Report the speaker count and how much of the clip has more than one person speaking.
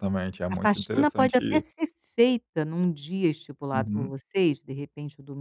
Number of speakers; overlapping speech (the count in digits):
2, about 28%